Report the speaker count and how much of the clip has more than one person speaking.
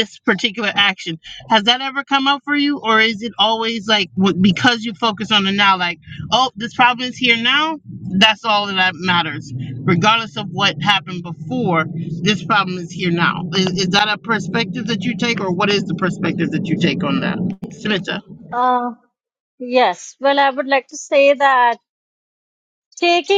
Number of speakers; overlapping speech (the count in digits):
2, no overlap